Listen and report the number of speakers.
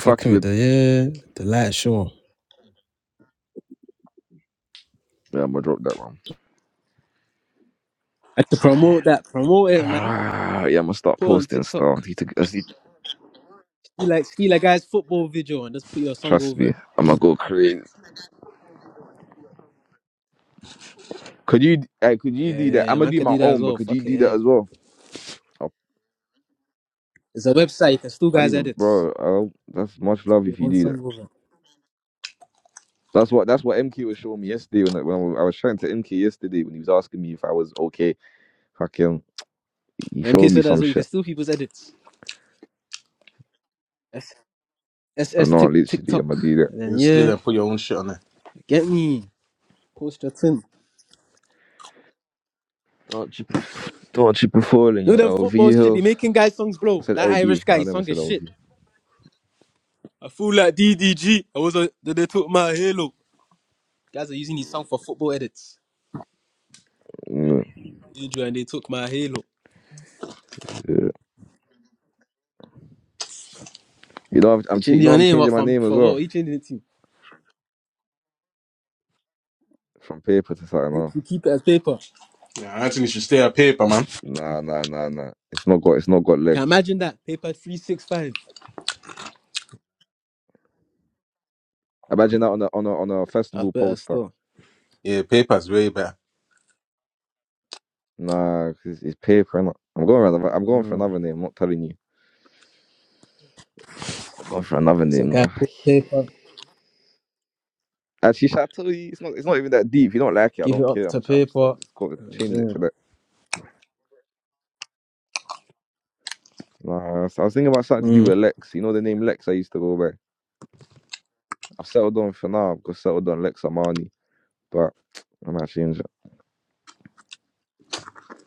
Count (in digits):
3